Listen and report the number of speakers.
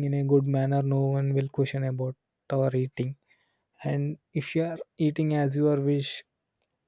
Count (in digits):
1